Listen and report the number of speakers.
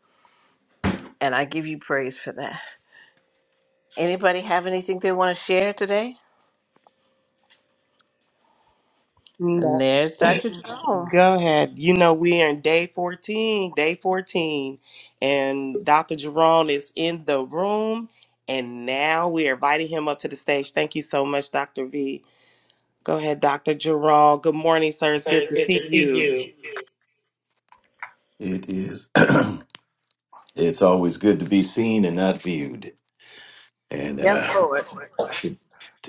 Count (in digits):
3